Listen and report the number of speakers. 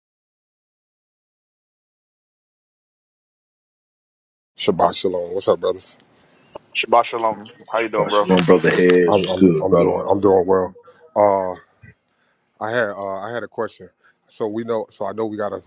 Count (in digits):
3